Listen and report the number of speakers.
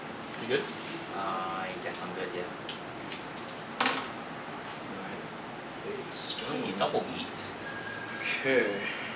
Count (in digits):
2